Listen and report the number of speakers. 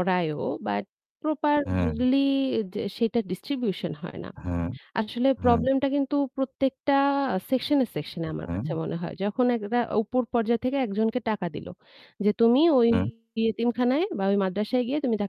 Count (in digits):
2